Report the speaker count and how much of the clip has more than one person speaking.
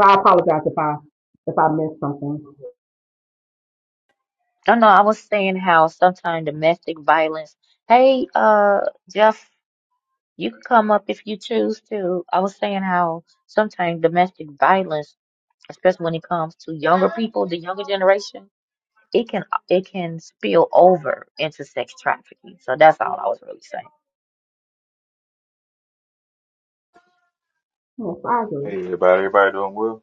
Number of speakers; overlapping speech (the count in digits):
3, under 1%